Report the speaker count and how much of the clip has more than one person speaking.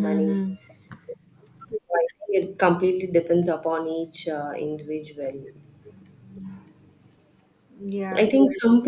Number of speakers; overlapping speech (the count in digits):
2, about 10%